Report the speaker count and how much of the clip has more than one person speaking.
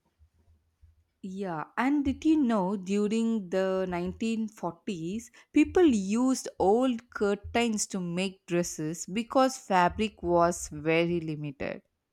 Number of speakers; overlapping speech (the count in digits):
1, no overlap